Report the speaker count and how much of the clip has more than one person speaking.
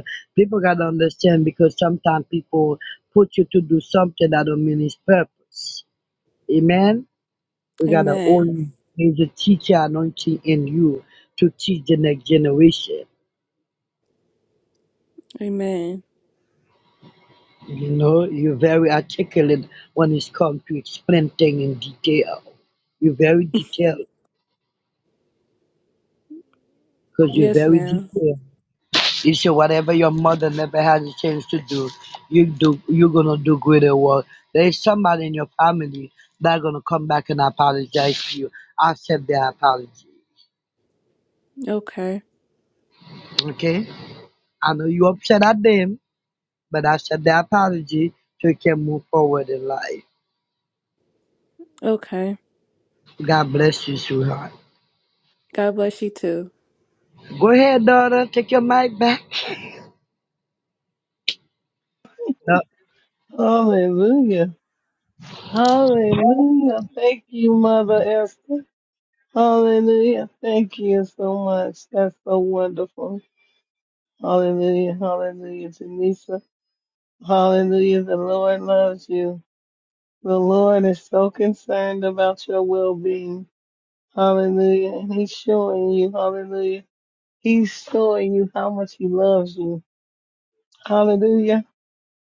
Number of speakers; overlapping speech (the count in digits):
3, about 2%